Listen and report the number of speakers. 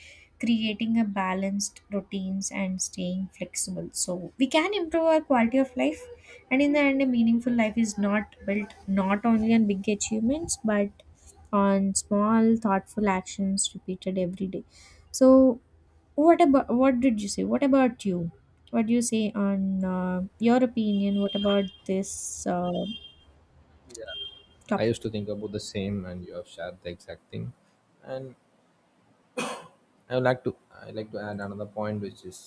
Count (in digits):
2